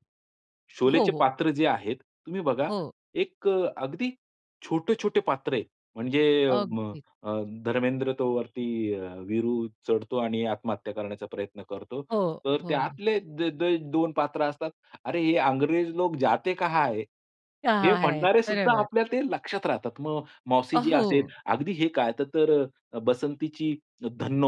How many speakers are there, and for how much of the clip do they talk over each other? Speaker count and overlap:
two, about 9%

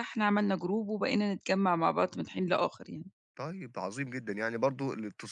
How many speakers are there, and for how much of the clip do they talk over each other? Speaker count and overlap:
two, no overlap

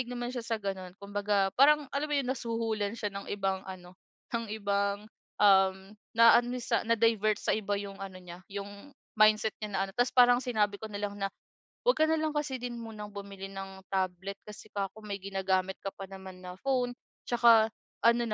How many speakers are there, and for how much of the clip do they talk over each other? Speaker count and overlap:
one, no overlap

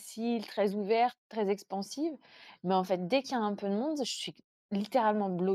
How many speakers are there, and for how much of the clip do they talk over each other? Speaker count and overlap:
one, no overlap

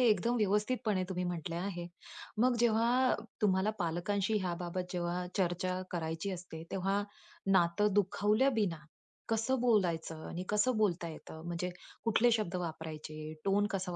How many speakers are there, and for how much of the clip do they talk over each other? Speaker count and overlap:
one, no overlap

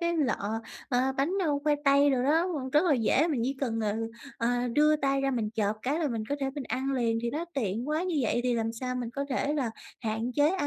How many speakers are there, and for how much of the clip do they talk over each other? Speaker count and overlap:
one, no overlap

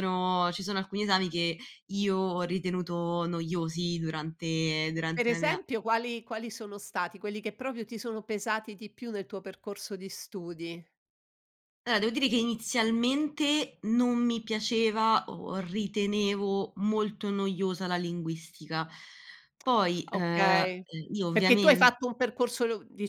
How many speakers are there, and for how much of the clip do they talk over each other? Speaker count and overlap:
two, about 7%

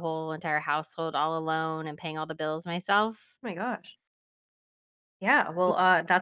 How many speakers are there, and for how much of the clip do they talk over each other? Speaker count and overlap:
two, about 1%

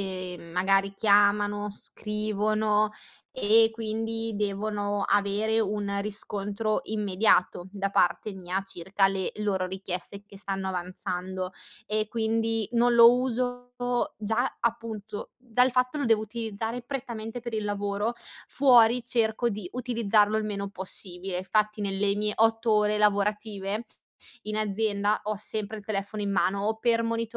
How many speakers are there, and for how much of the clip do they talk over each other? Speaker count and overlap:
one, no overlap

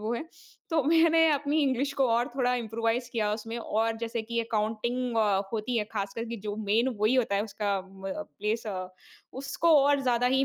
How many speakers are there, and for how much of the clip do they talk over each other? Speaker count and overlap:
one, no overlap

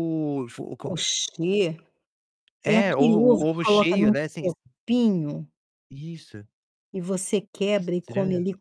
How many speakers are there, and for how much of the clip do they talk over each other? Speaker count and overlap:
two, about 30%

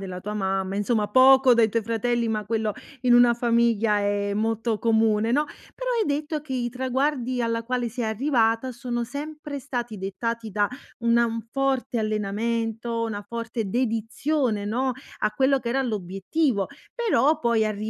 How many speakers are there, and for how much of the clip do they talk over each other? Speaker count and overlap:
one, no overlap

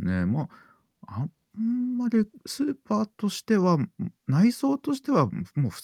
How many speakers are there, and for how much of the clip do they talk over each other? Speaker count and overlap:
one, no overlap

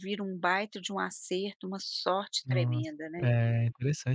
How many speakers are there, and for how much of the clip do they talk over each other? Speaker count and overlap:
two, about 11%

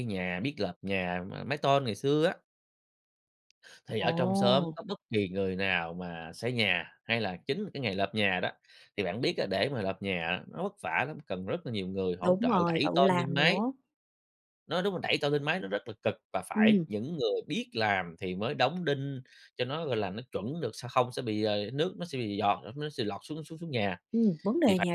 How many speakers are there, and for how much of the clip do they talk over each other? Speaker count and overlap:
two, about 10%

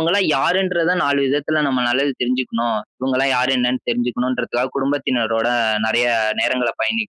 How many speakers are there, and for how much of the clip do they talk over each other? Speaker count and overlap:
one, no overlap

